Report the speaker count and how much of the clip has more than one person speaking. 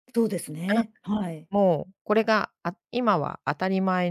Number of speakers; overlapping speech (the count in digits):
2, about 4%